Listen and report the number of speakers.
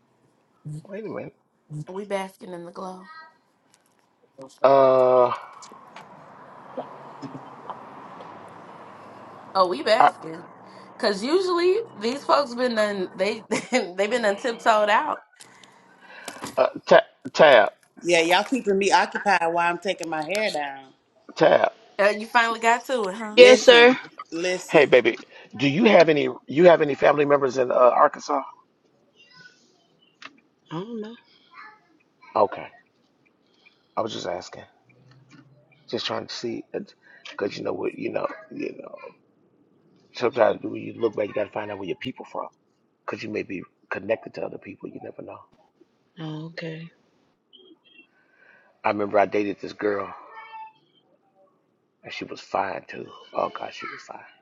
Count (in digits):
4